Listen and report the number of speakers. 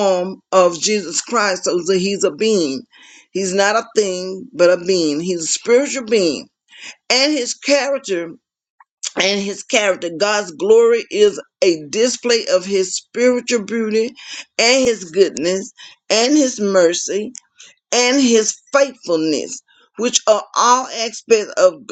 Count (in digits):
1